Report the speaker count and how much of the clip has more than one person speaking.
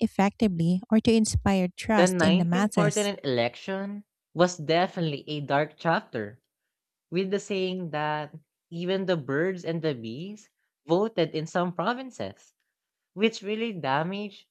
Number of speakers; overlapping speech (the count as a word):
two, about 7%